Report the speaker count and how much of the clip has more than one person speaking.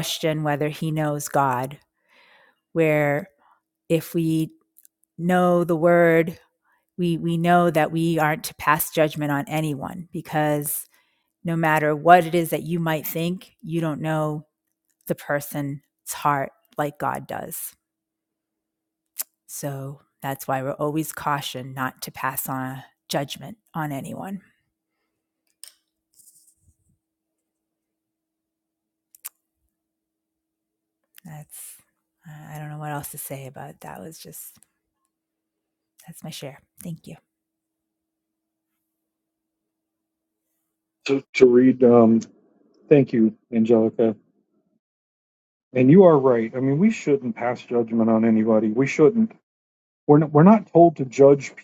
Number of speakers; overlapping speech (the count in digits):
2, no overlap